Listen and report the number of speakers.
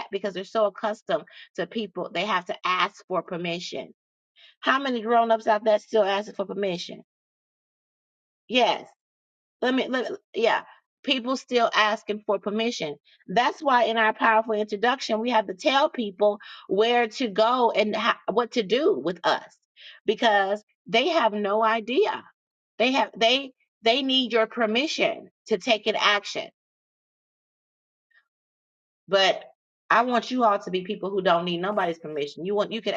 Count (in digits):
1